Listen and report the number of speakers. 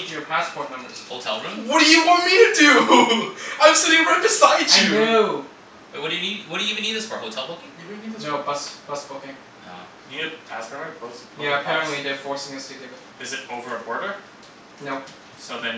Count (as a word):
four